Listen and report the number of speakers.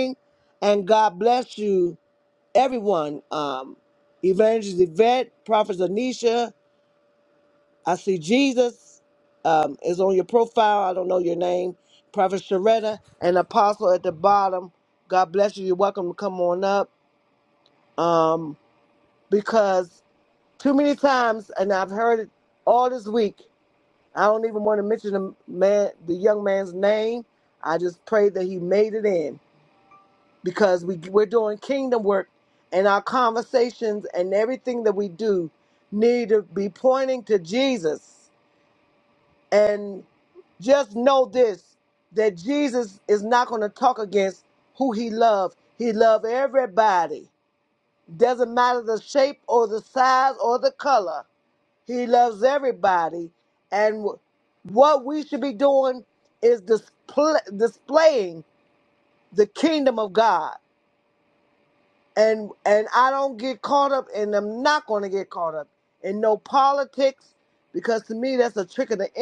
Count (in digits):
1